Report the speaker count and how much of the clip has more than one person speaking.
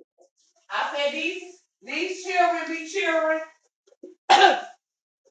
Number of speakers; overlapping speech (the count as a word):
one, no overlap